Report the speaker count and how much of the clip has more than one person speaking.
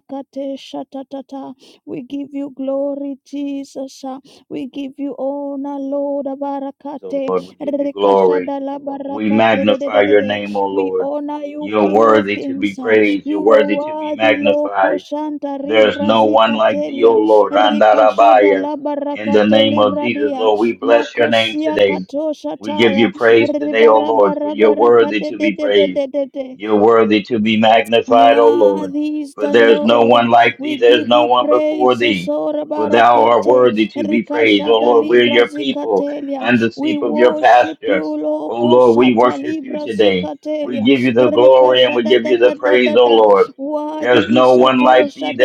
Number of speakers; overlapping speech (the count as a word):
two, about 59%